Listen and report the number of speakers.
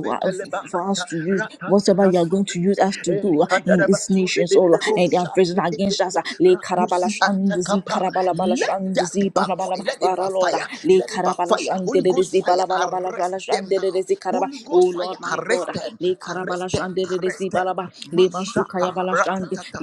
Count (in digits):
2